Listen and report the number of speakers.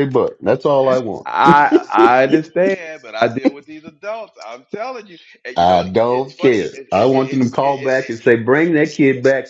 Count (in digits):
2